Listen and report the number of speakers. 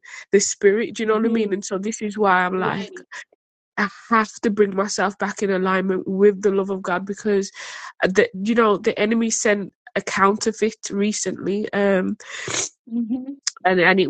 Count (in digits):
2